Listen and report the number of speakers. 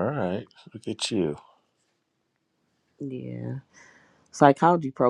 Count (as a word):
two